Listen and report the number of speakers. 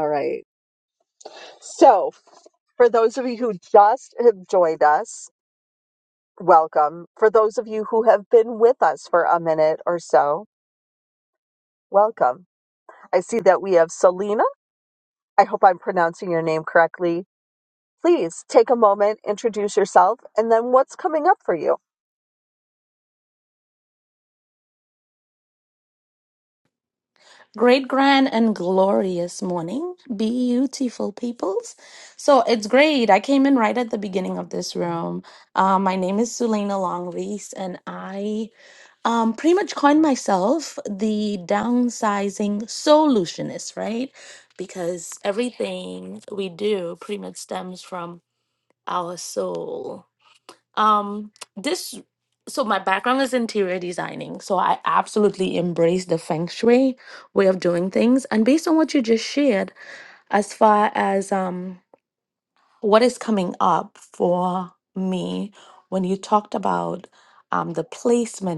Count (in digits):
2